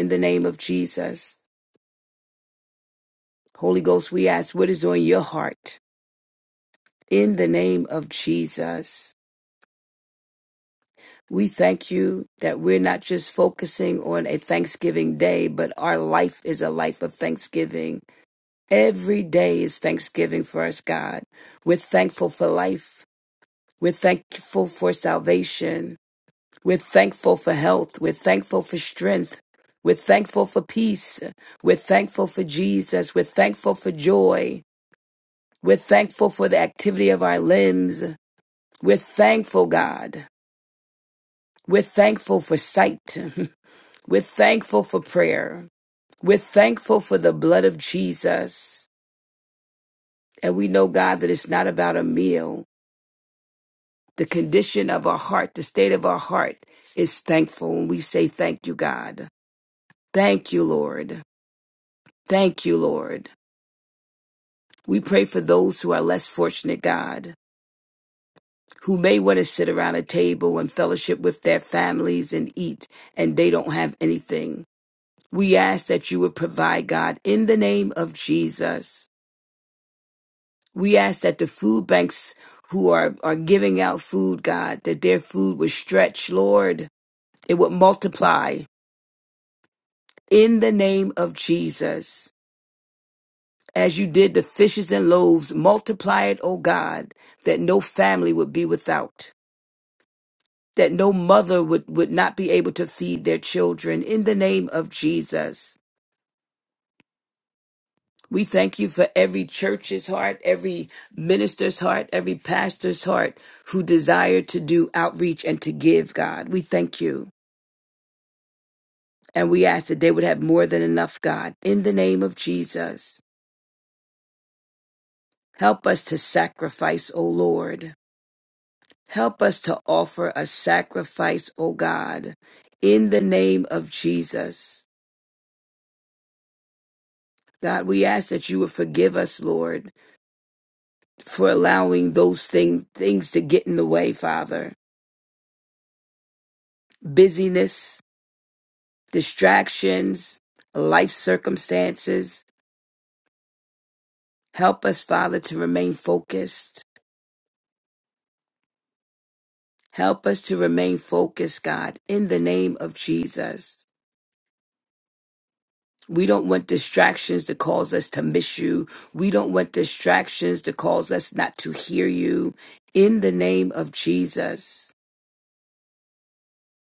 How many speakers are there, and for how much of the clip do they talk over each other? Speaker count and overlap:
one, no overlap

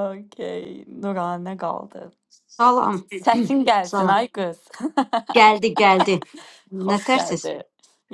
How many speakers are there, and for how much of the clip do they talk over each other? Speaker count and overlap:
two, about 9%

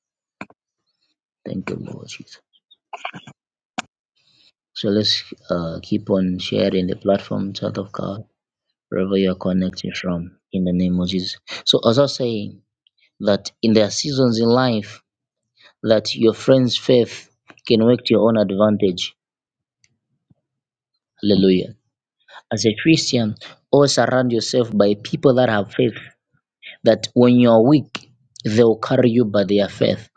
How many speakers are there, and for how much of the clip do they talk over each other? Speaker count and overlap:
one, no overlap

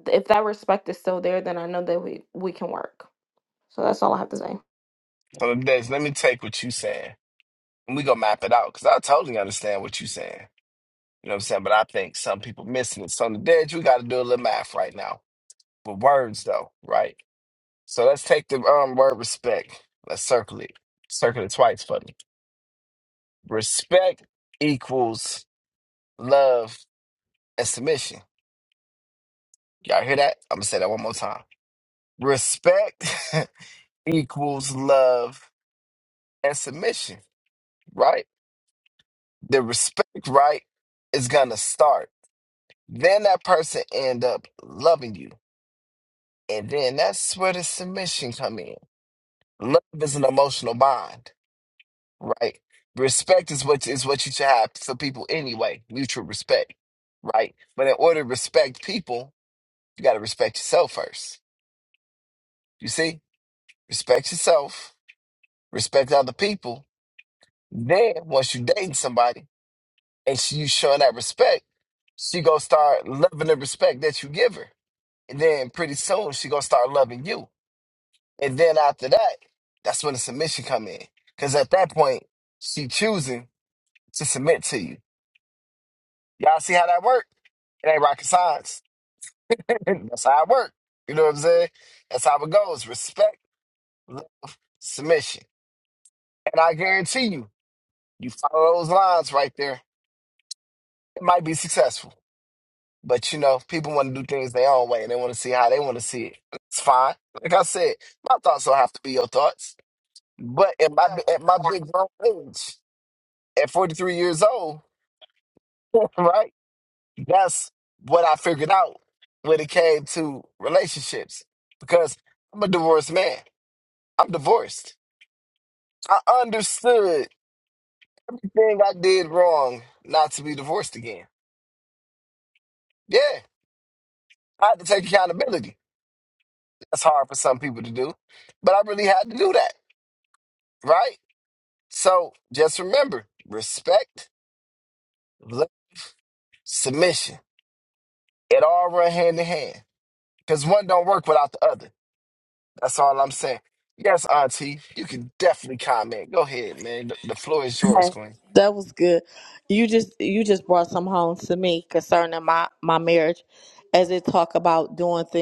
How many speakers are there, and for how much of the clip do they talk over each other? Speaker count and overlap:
three, under 1%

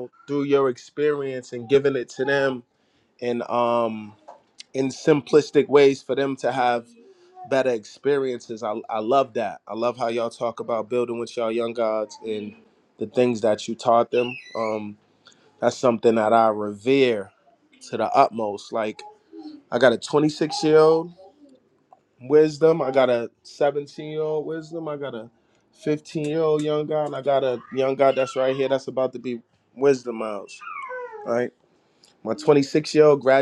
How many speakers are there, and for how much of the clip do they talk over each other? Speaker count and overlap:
one, no overlap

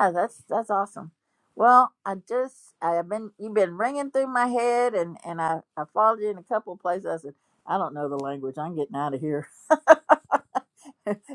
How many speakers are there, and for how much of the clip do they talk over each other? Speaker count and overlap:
one, no overlap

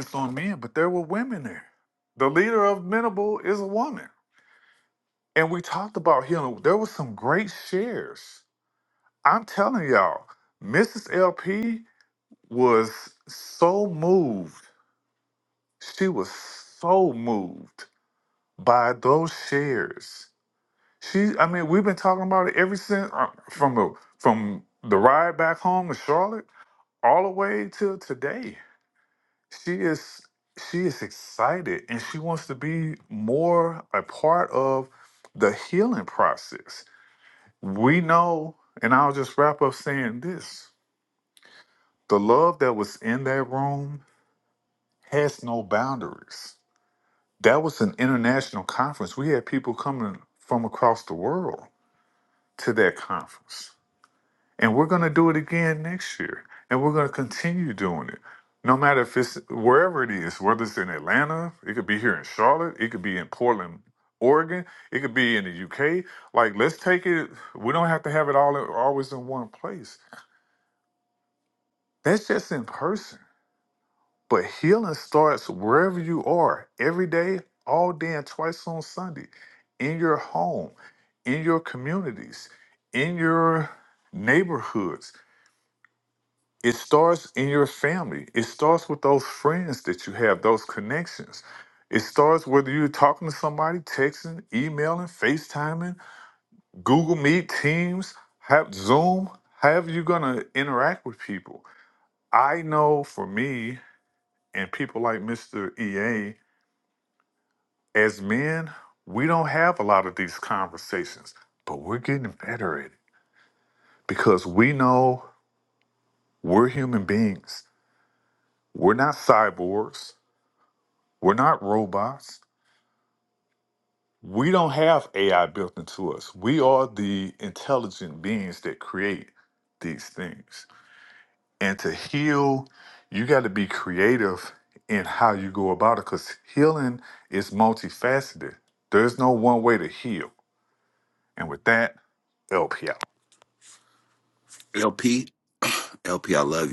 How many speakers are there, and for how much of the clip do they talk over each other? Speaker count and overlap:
two, no overlap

